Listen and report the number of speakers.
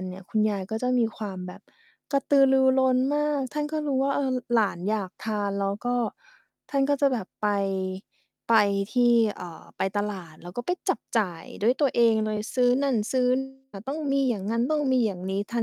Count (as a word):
one